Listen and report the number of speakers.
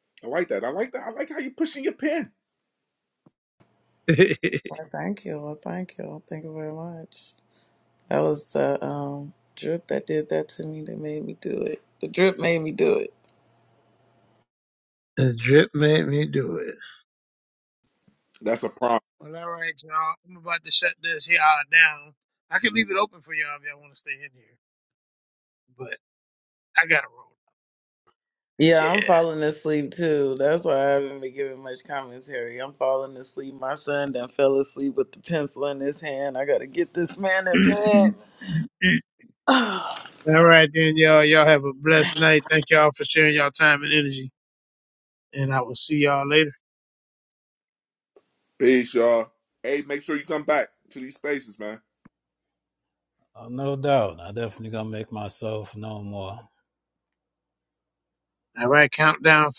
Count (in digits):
4